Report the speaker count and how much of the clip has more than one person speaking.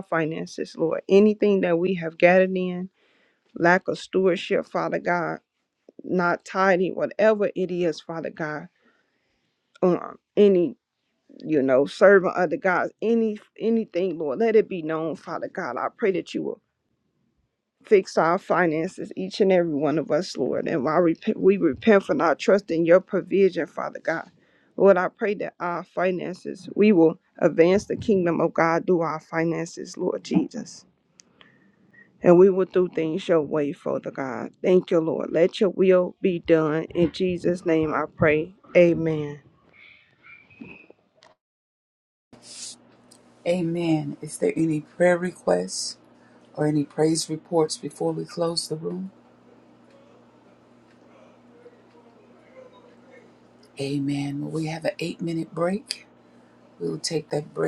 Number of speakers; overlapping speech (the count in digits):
2, no overlap